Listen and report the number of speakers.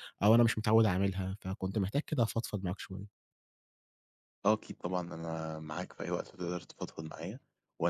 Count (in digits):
2